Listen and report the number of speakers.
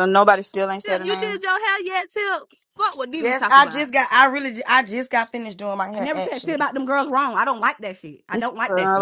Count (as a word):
four